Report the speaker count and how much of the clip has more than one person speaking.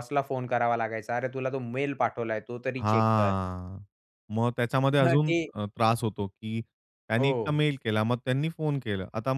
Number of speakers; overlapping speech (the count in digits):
2, about 15%